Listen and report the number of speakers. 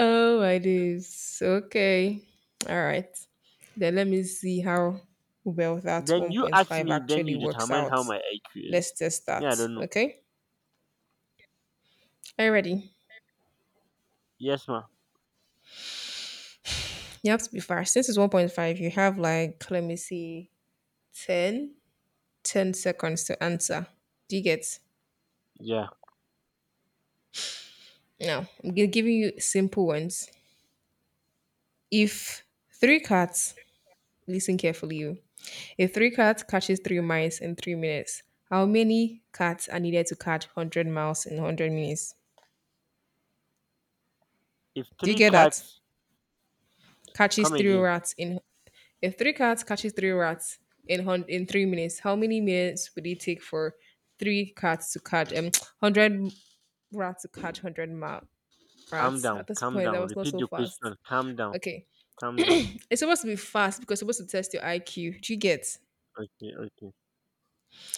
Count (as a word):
two